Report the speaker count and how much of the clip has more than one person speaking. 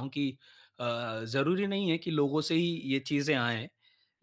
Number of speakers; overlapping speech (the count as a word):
one, no overlap